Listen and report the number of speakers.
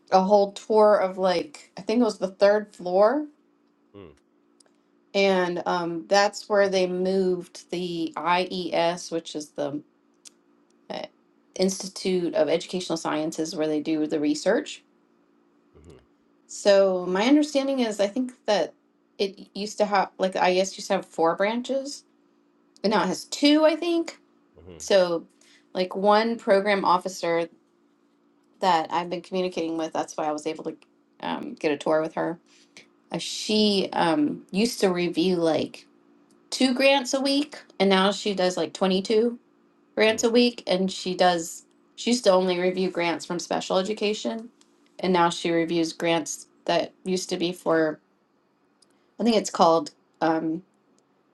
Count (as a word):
two